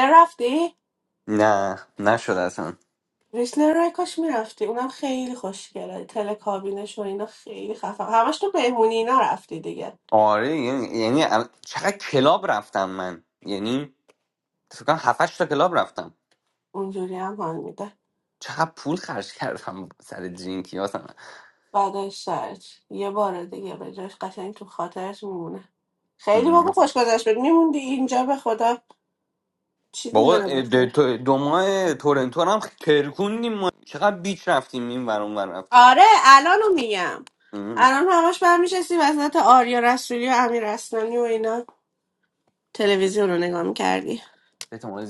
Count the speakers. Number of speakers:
2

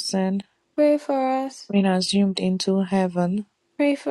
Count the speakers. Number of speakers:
2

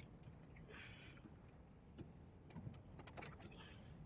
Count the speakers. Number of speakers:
0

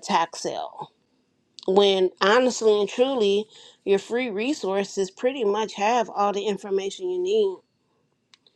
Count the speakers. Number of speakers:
1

